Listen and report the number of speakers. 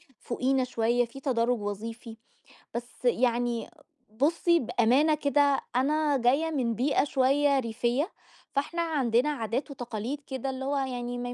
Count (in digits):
1